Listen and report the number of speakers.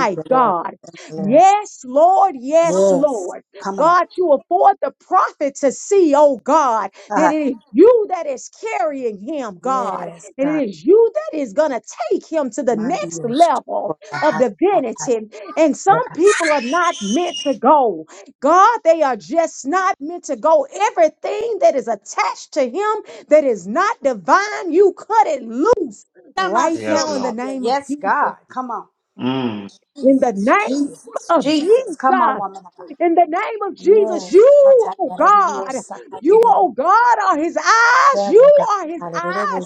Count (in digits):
3